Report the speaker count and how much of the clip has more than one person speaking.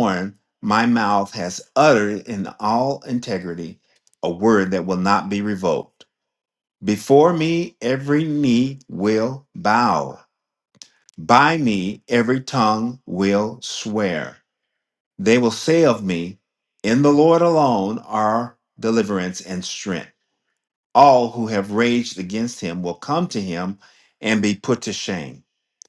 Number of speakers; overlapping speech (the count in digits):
1, no overlap